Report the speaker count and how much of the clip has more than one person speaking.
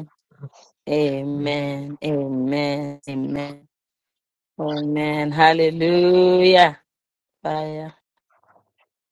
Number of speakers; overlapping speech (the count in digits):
1, no overlap